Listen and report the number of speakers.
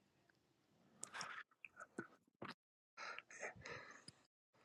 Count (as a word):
zero